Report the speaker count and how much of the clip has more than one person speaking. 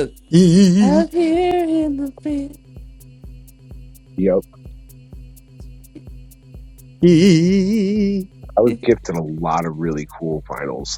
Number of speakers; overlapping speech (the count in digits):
3, about 2%